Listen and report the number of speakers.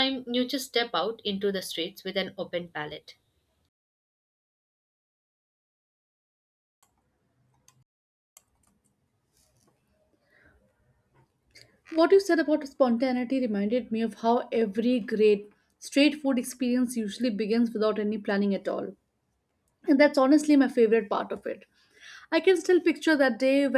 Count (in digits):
2